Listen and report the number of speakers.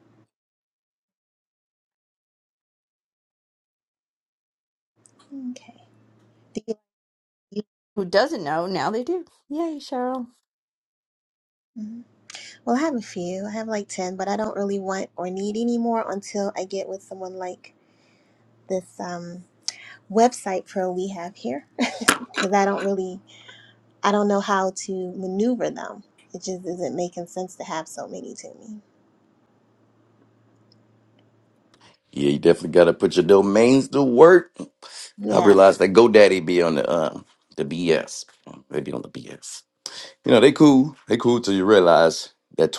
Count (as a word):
three